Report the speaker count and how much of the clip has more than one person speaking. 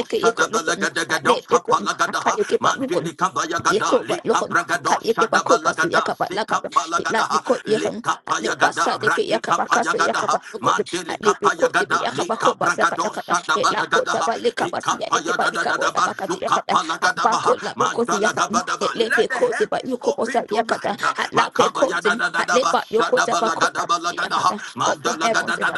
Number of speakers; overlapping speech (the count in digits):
2, about 86%